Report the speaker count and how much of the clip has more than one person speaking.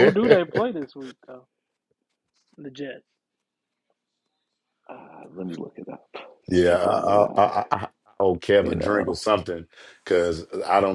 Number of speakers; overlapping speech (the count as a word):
three, about 13%